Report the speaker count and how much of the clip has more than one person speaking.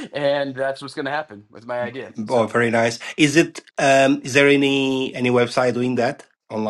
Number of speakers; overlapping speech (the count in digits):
2, about 6%